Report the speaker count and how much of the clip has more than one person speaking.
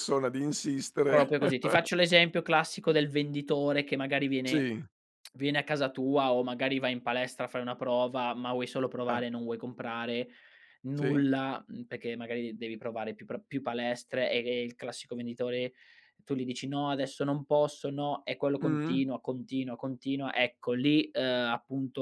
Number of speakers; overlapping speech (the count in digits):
2, about 5%